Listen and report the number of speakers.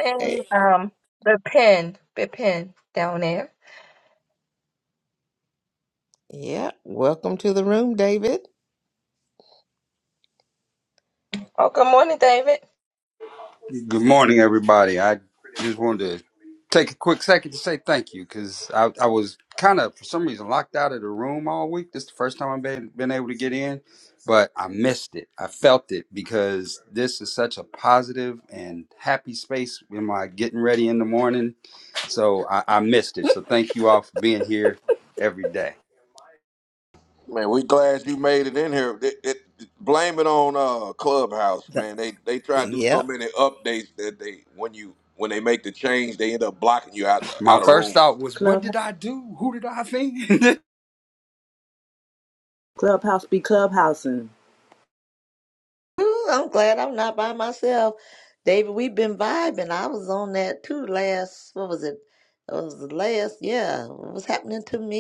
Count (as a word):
six